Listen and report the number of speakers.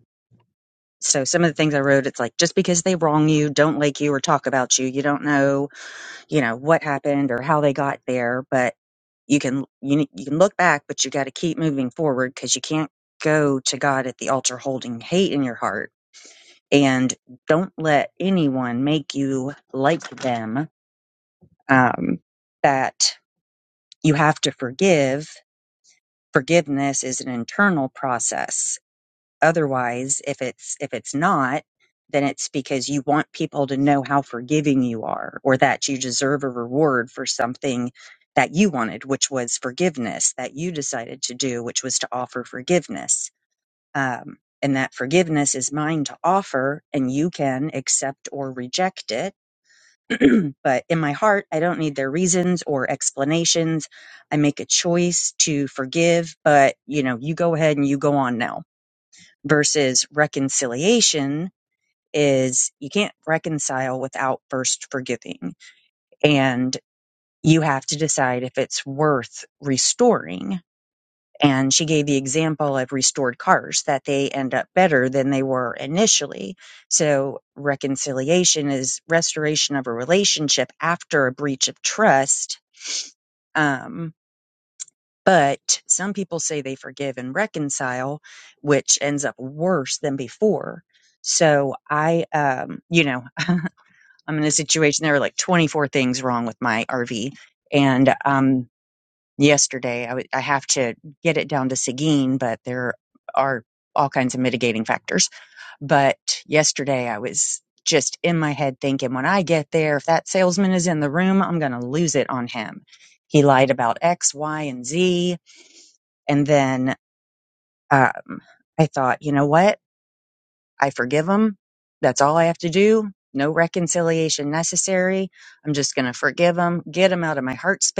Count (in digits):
1